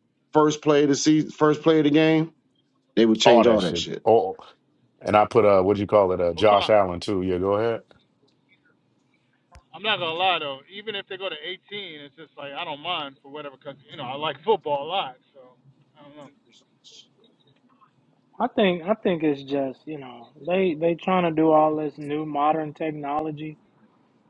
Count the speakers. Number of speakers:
4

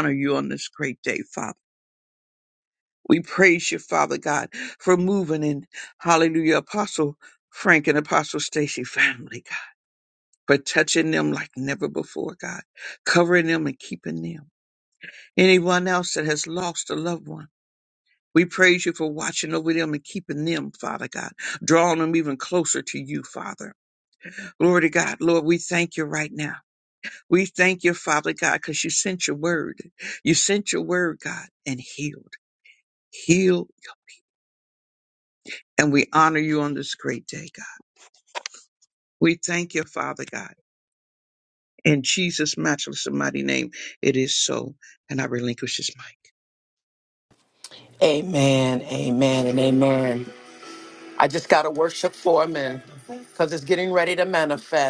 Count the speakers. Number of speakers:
2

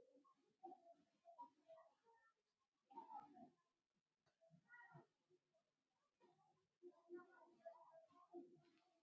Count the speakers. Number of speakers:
0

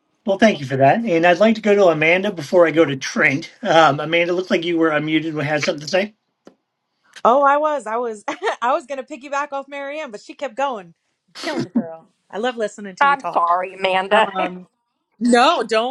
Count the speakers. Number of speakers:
3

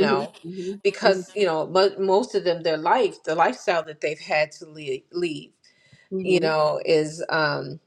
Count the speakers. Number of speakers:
2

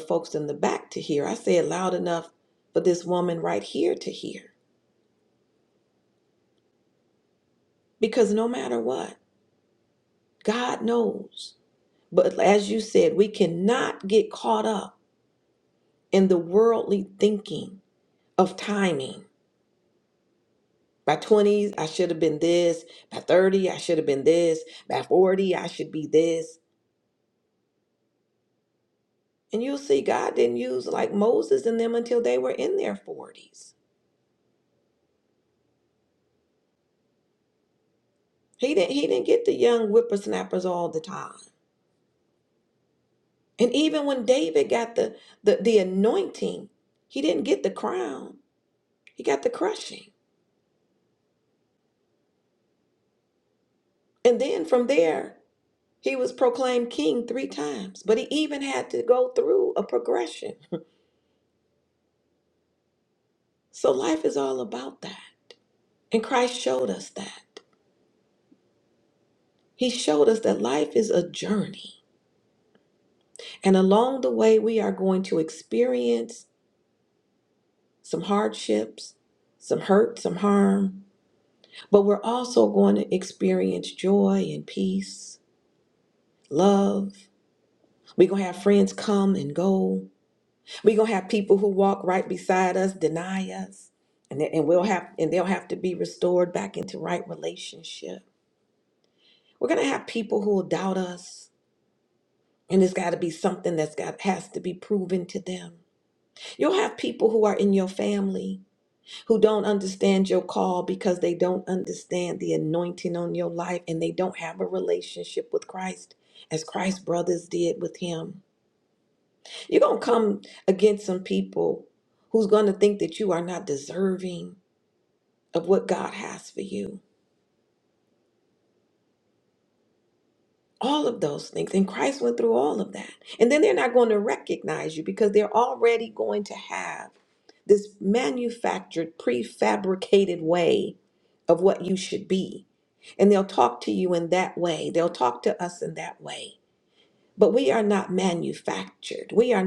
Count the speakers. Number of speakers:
1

